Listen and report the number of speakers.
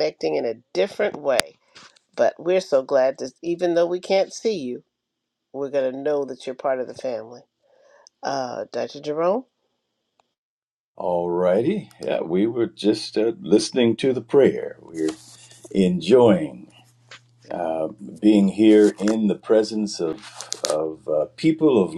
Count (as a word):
two